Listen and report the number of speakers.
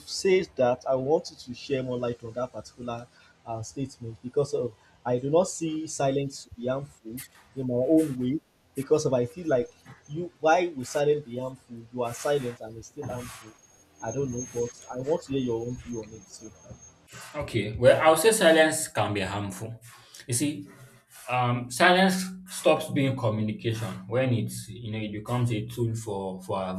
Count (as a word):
two